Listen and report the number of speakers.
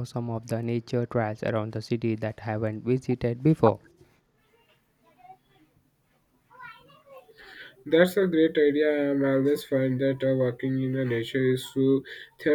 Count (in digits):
2